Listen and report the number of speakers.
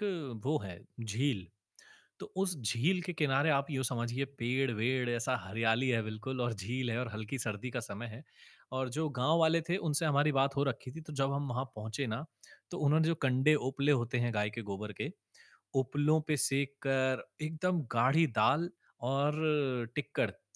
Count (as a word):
one